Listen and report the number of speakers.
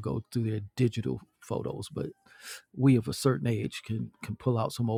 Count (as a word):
one